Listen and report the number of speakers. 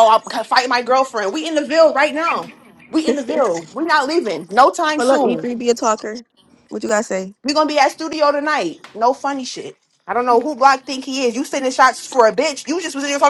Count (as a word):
two